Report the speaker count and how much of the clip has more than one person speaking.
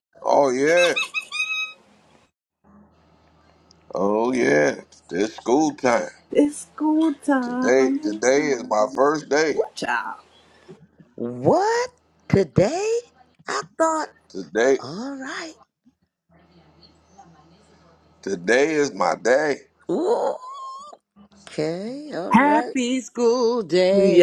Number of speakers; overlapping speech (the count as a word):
four, about 6%